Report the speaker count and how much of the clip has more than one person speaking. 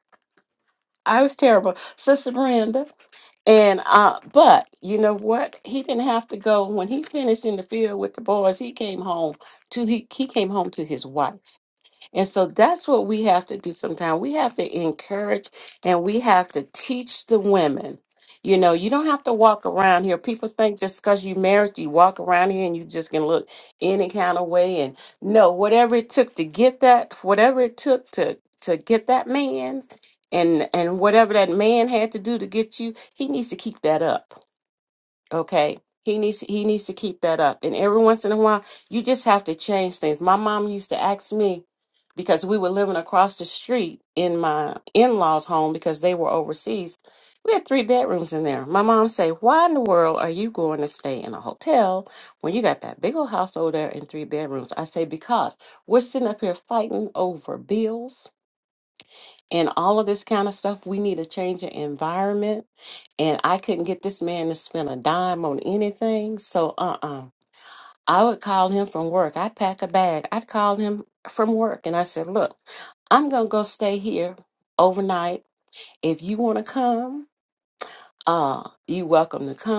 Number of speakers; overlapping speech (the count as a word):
one, no overlap